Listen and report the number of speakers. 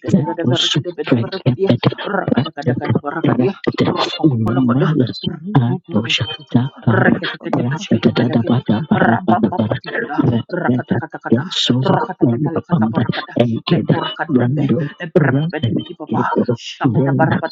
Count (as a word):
two